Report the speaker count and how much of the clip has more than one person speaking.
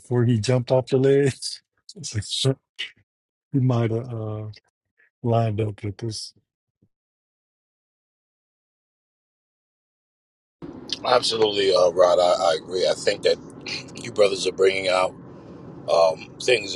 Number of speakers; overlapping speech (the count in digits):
2, no overlap